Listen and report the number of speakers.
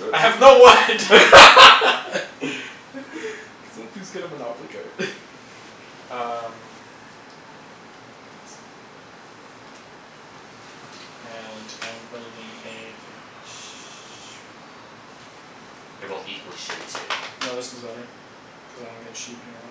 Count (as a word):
three